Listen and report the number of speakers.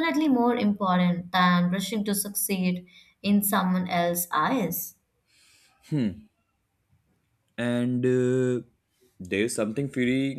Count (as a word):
two